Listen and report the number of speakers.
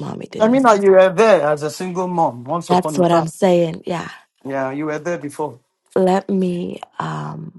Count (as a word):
two